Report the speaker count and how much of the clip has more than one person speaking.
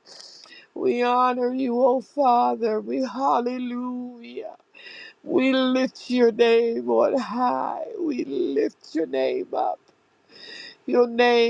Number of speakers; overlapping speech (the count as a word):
one, no overlap